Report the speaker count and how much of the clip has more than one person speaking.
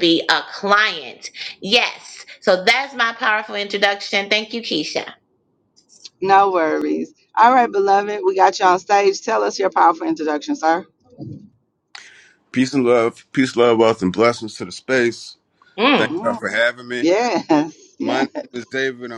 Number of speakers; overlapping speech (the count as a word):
three, about 4%